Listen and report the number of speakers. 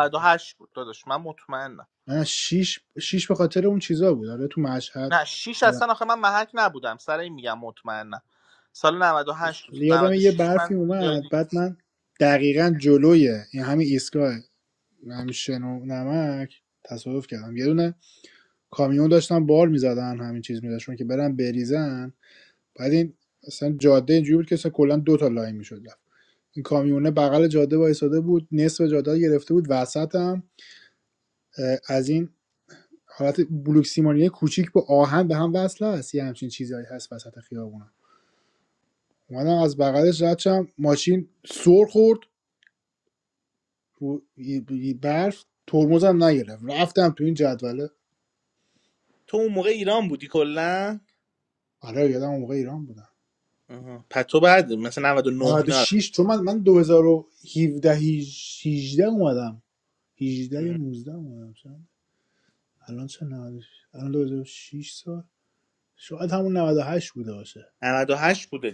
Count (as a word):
two